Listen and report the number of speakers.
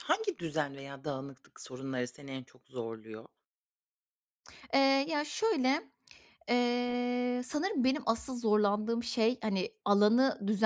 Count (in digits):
2